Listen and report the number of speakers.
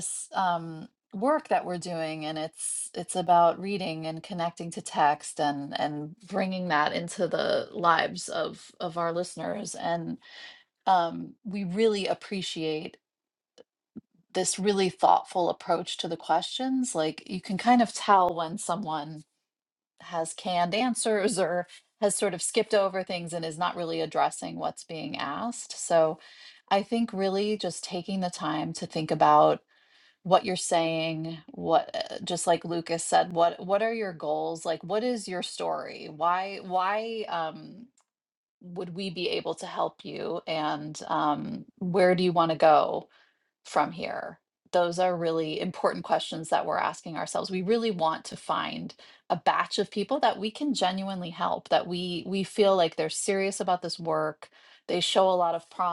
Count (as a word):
one